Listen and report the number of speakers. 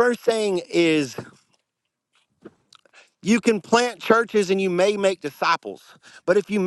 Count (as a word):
one